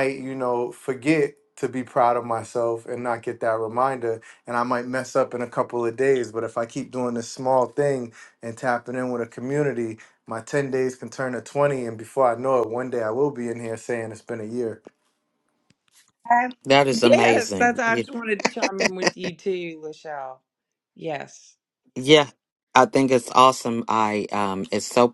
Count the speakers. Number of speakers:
3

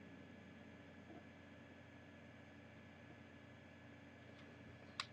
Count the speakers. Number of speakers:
0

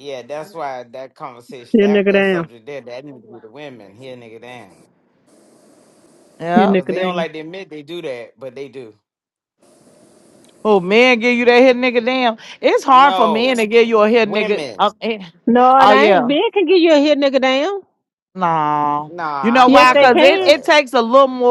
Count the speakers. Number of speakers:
3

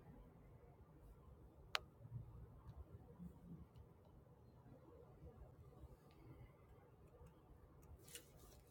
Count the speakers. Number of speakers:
0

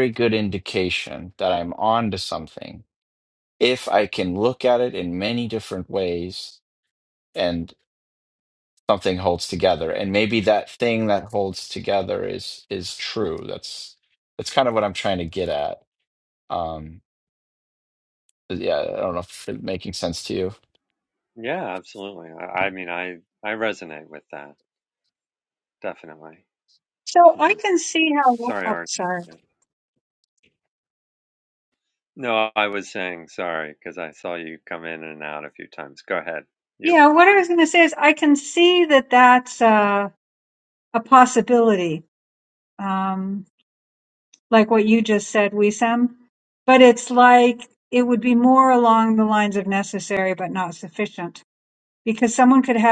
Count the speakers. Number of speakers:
3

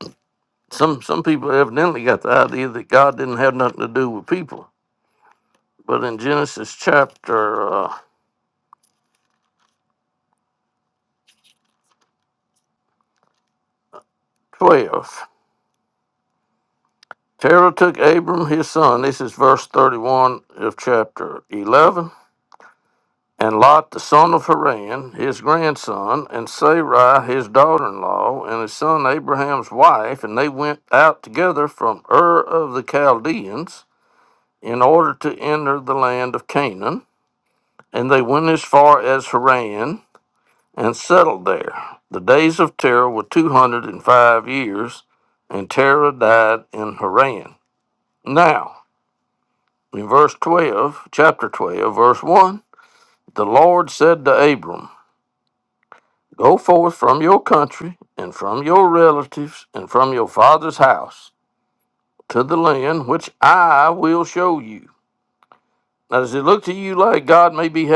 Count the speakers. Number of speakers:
1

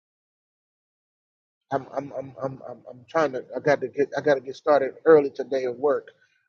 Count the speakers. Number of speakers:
1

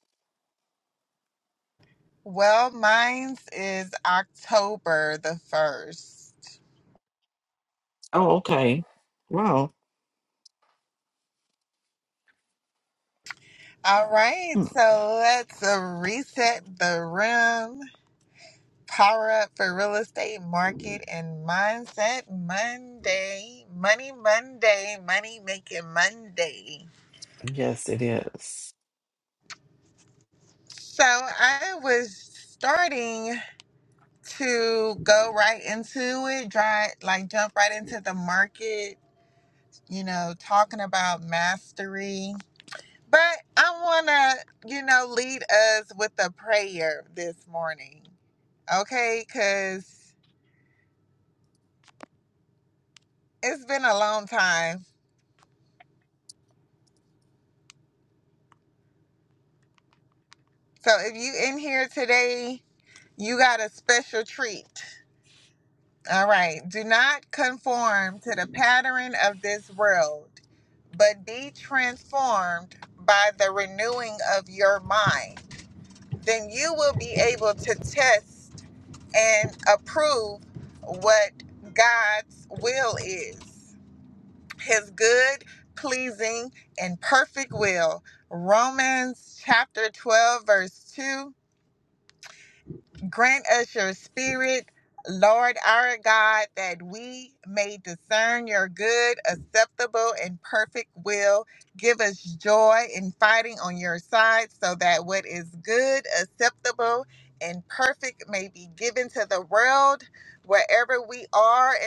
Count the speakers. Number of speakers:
2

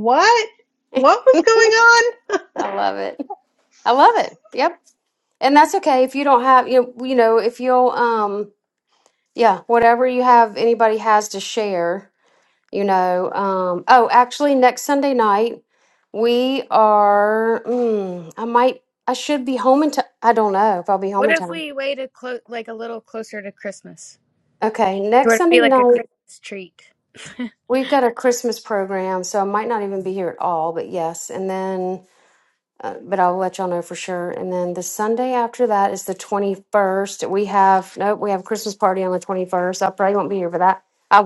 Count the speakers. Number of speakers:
3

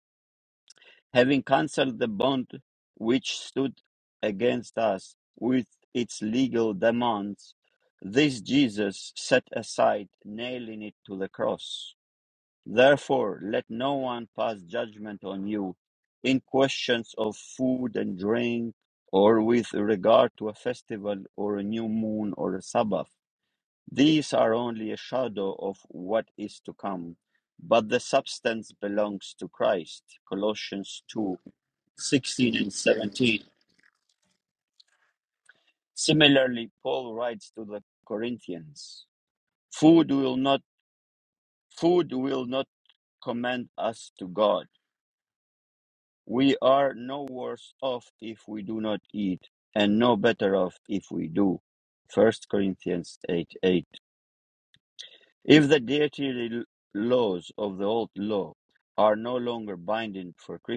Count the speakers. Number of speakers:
1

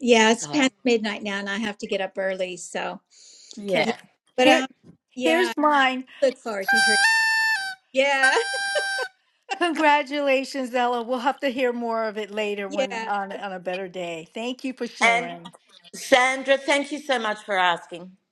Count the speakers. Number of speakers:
3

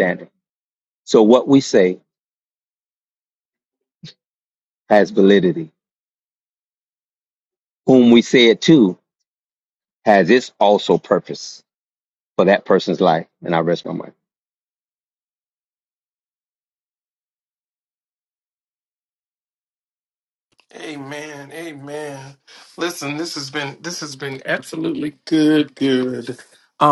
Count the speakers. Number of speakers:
2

